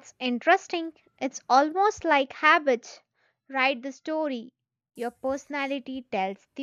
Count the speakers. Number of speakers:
1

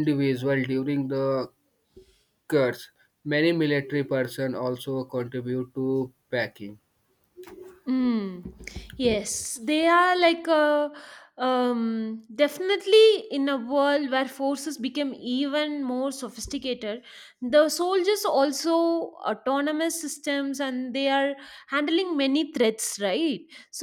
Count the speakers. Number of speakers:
2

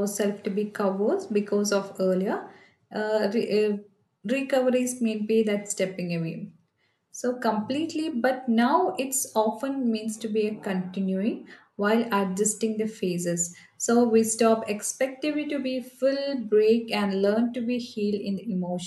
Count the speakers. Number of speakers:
1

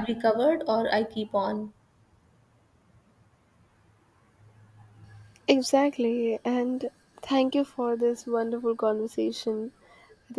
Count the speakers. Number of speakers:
2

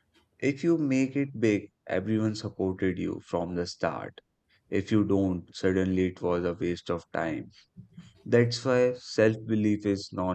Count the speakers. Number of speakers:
1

